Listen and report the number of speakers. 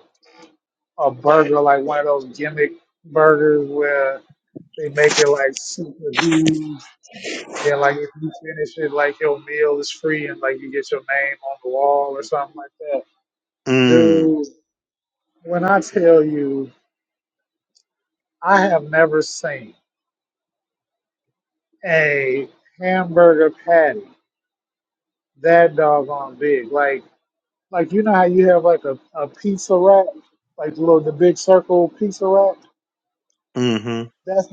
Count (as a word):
two